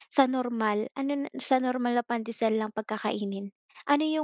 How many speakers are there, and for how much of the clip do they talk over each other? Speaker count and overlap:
one, no overlap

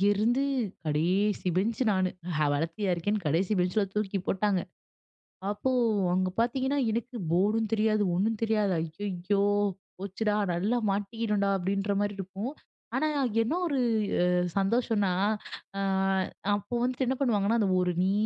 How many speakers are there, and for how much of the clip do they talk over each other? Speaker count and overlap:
one, no overlap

